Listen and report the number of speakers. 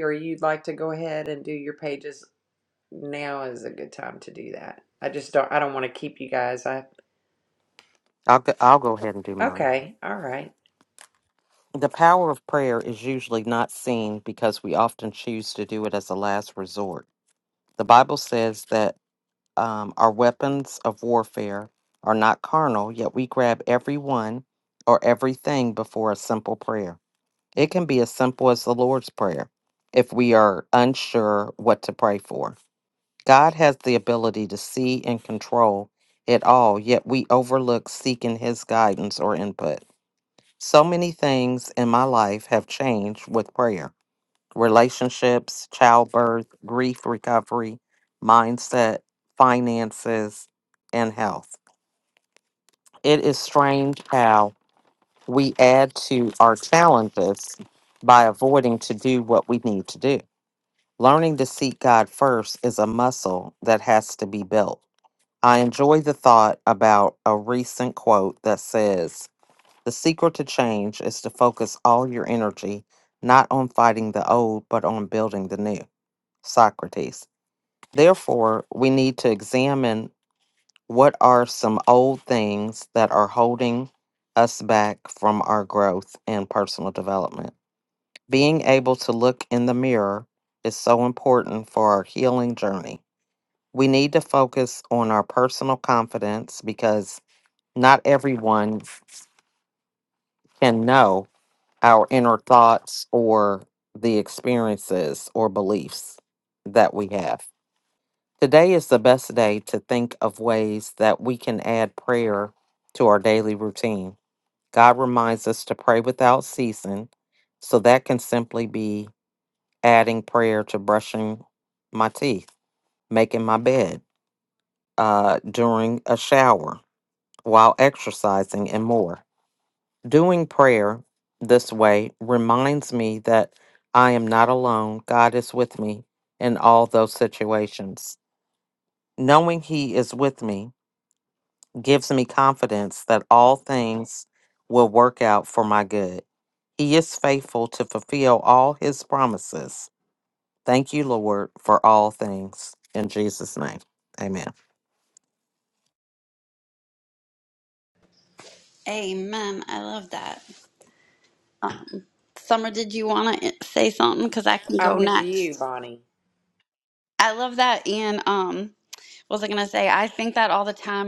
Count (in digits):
3